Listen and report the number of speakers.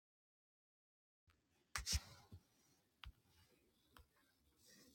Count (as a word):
zero